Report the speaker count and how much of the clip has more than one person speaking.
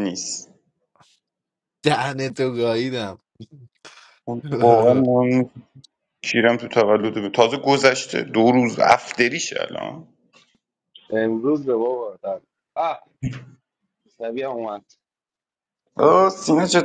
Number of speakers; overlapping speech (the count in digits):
3, no overlap